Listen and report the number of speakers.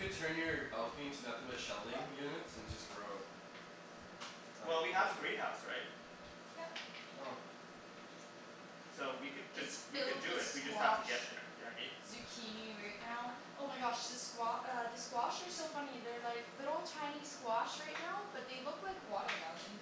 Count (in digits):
3